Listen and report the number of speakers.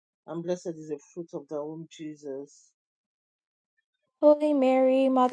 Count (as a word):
two